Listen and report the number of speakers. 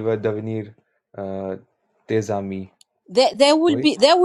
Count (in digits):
2